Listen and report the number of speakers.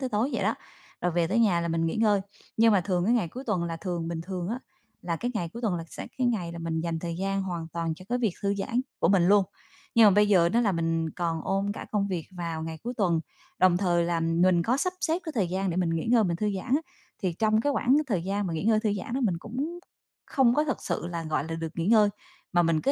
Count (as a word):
one